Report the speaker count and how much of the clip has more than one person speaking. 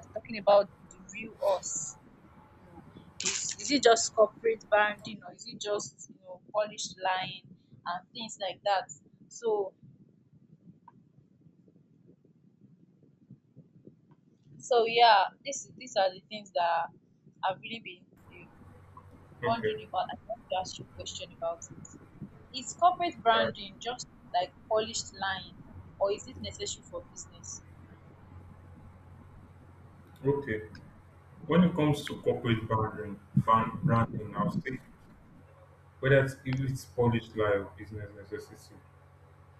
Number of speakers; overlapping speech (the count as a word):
two, about 2%